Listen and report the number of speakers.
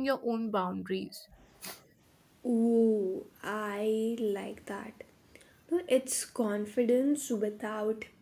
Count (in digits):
2